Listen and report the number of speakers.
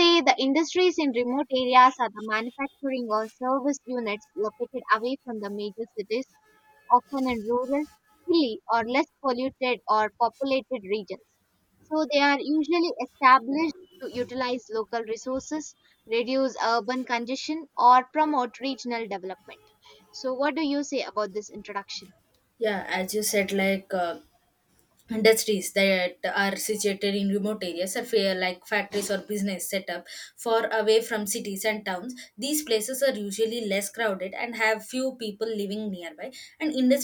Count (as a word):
two